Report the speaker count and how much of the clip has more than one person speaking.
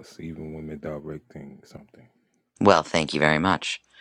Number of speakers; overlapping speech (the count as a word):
two, no overlap